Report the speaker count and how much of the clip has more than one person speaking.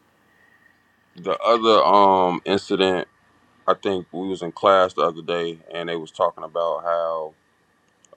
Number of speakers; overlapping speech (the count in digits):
1, no overlap